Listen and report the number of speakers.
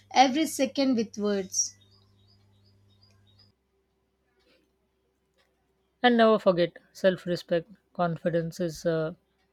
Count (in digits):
2